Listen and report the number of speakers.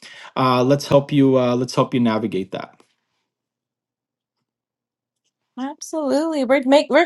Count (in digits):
2